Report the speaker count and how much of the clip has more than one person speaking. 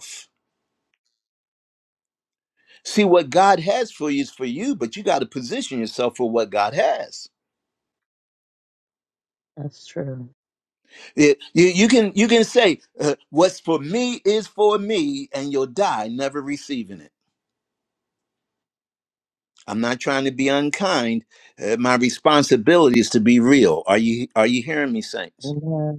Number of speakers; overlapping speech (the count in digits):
2, no overlap